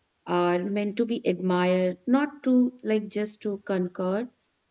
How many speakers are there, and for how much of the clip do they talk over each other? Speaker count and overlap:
1, no overlap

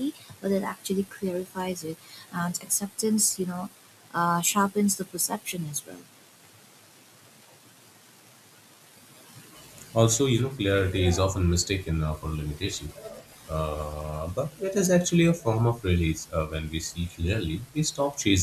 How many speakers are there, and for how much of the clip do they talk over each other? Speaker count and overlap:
2, no overlap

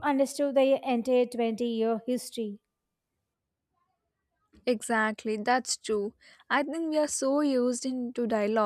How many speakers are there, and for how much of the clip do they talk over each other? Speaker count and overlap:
2, no overlap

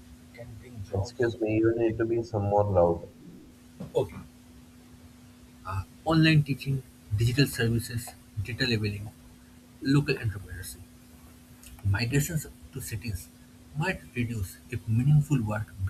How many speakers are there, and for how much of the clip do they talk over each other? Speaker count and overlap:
2, about 2%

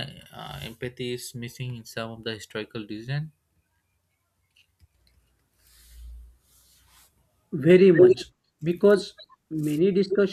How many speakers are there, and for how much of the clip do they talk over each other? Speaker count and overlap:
2, no overlap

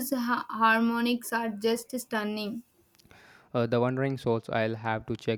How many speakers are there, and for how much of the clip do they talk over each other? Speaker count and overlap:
2, no overlap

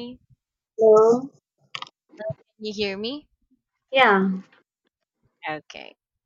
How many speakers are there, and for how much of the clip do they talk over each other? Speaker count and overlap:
2, no overlap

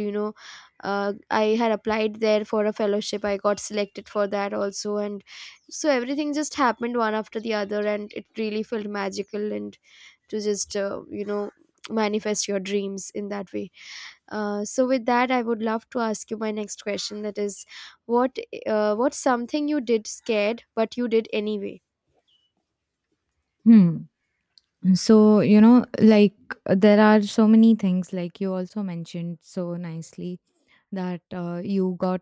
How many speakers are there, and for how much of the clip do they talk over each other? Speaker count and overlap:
2, no overlap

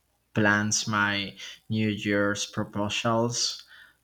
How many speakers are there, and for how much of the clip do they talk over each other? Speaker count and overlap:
1, no overlap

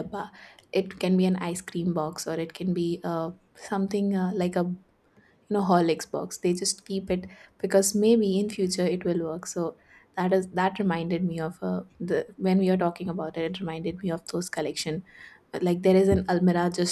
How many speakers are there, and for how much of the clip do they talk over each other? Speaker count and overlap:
1, no overlap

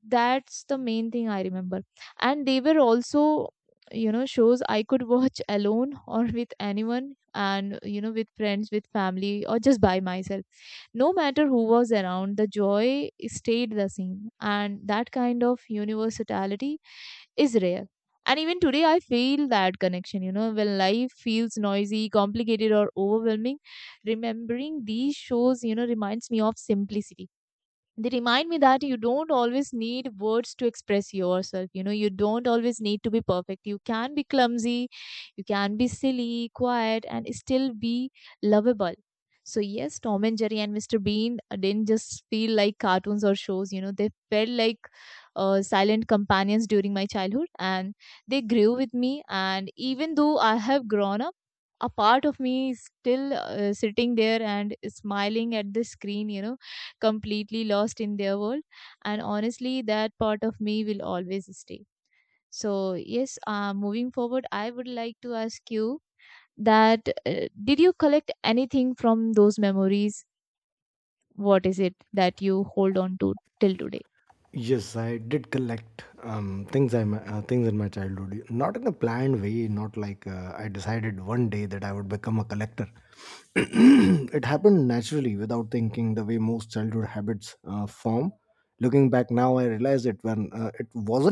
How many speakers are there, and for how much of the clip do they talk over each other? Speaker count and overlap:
2, no overlap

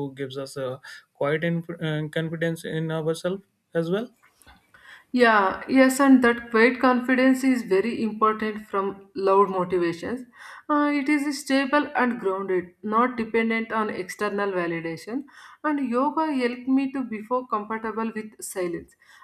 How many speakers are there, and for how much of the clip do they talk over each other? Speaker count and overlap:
2, no overlap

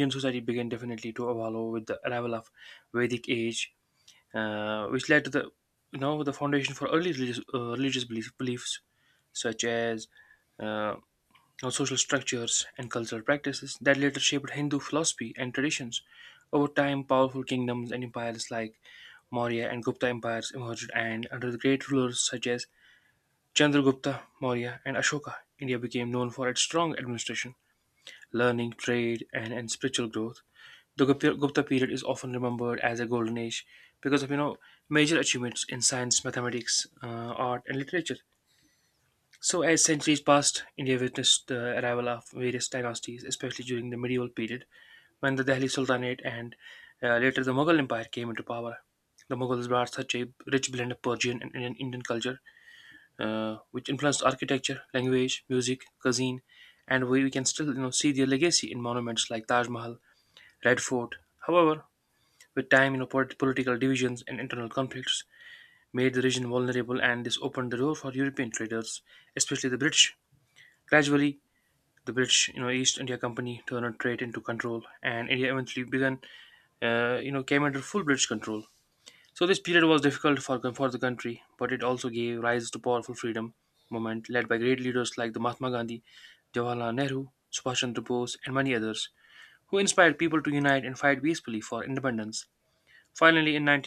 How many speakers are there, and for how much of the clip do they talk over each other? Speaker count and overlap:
1, no overlap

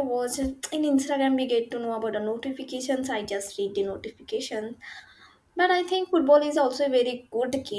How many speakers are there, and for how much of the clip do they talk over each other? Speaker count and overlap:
1, no overlap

